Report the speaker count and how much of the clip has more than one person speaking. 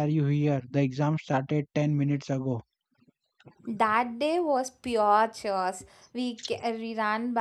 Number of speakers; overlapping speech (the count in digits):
2, no overlap